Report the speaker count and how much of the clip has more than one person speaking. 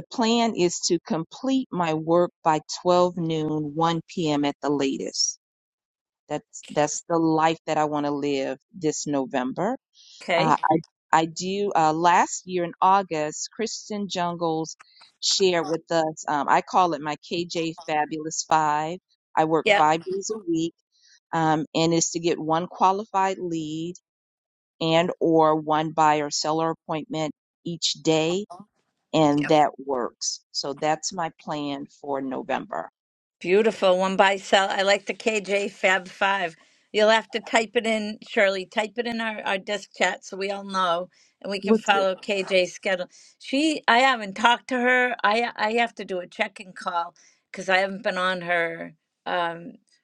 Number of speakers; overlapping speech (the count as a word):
two, about 2%